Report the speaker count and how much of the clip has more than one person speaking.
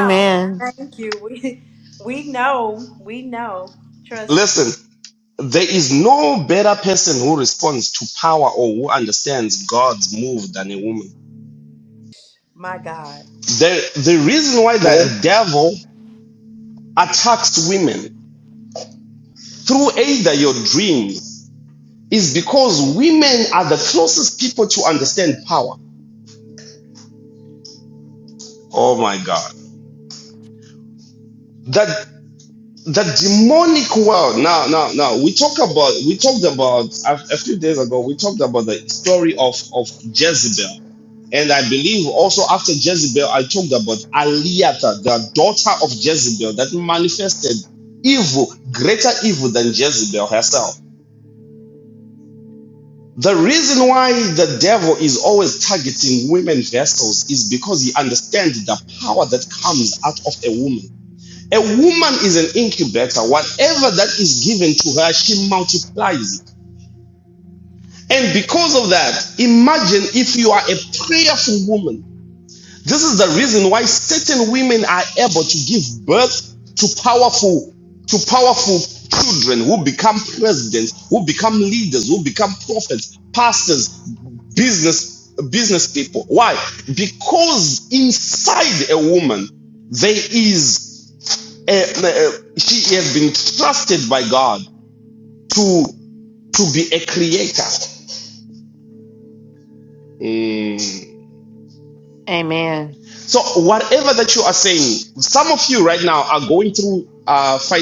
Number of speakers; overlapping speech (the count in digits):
3, under 1%